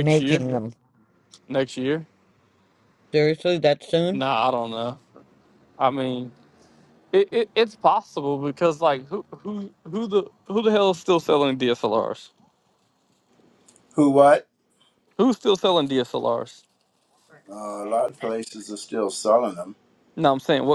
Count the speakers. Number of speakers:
3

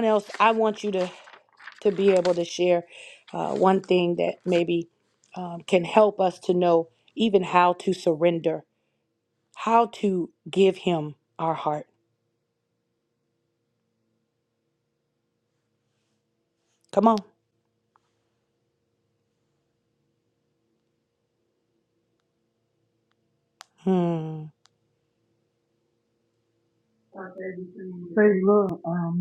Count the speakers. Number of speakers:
2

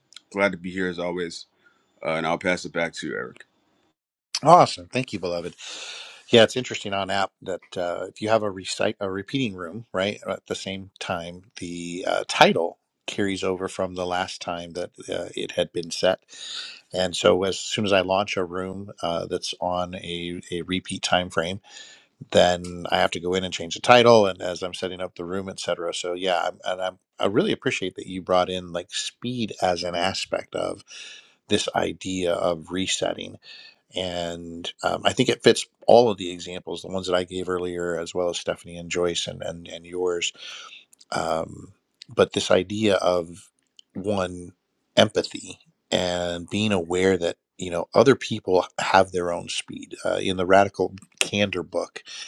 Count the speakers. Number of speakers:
2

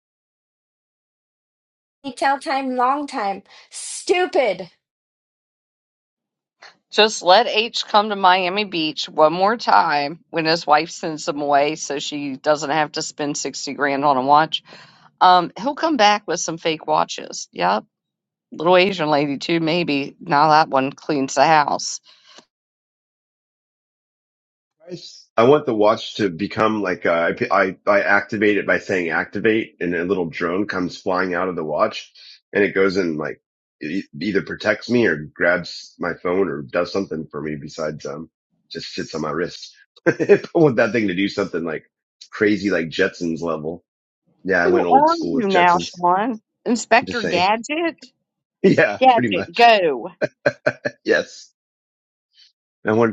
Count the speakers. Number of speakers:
3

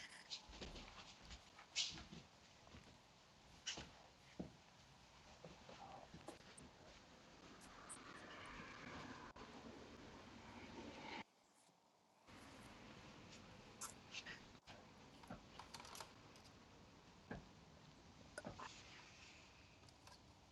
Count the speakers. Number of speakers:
0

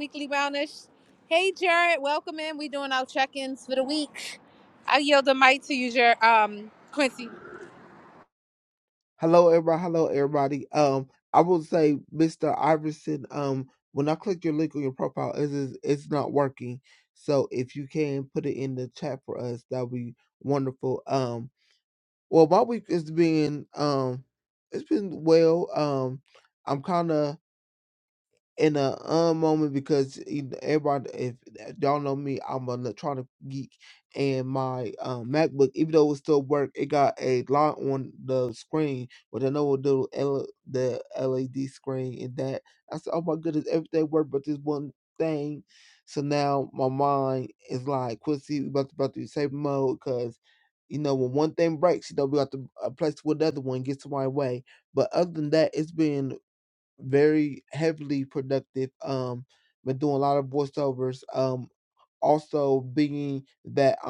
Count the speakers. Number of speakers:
2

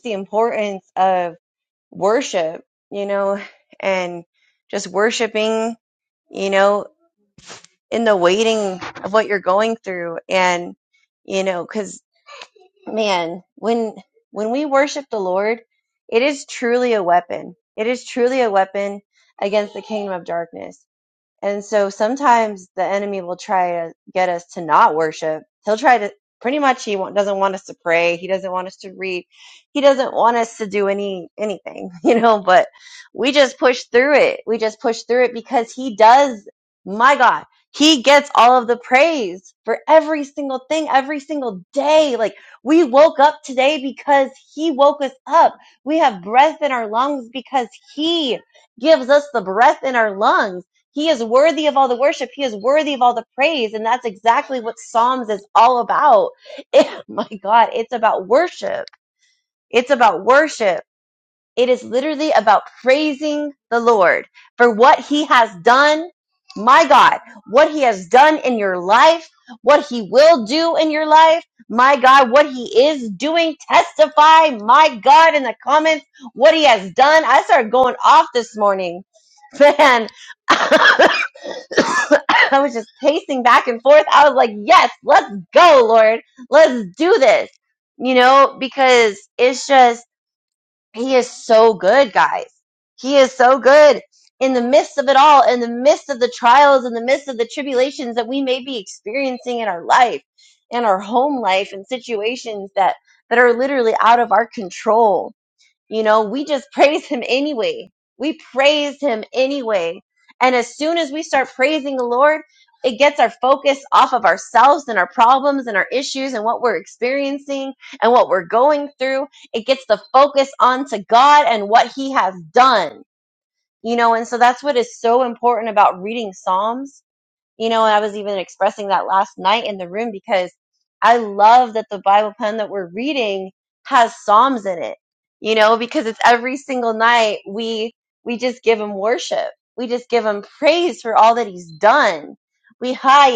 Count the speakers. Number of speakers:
1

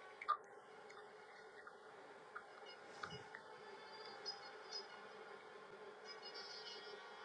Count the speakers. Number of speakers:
0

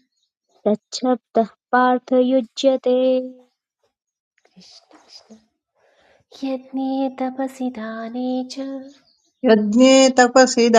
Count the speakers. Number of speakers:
3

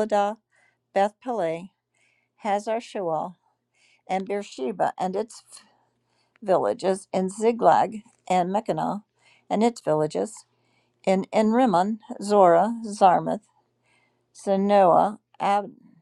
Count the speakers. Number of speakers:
1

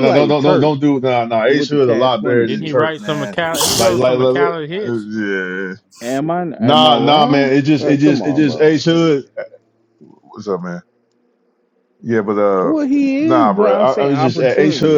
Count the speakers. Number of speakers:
3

